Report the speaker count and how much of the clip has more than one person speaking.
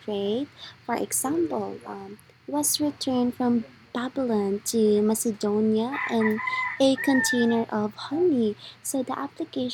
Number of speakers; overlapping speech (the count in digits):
1, no overlap